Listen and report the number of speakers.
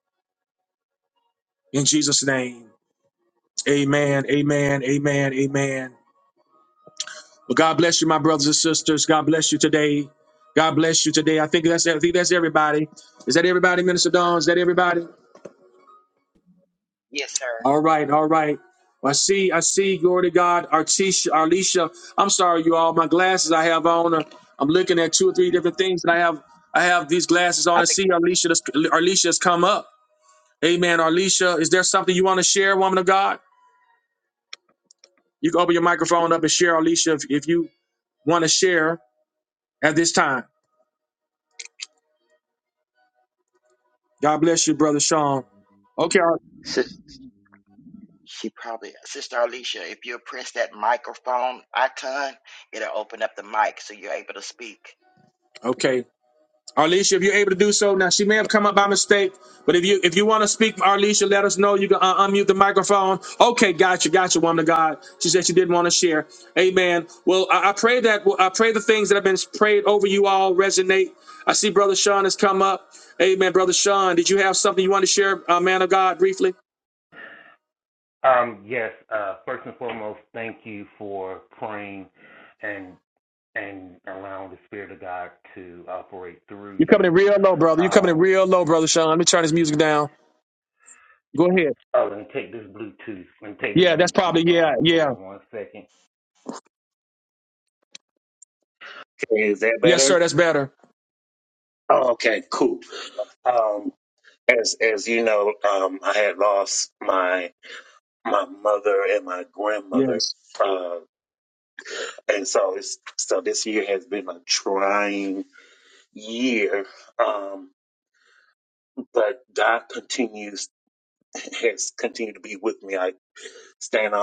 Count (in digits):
3